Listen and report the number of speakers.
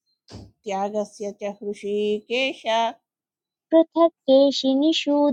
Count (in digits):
2